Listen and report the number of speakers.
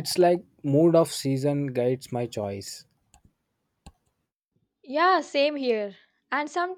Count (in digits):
2